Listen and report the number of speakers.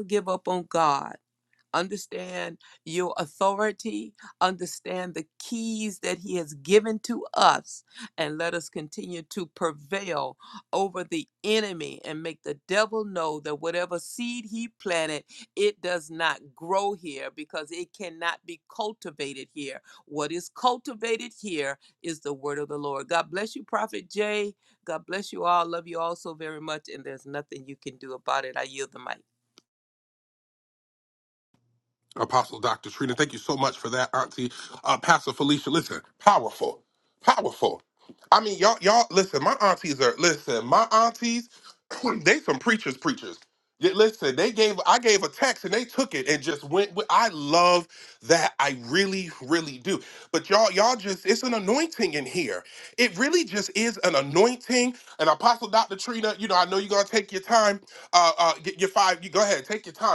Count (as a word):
two